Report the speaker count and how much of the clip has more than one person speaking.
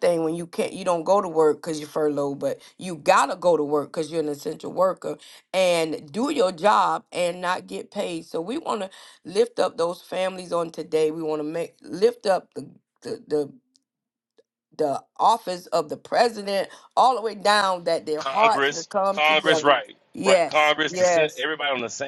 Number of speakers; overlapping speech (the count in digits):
2, about 9%